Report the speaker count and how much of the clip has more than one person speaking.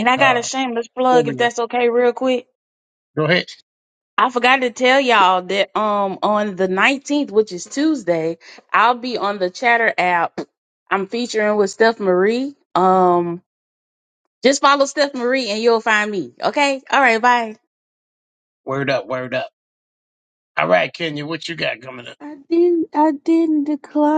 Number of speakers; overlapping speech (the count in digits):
3, about 3%